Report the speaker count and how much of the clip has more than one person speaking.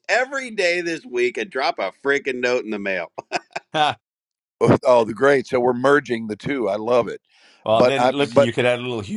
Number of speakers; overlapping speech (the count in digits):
3, about 7%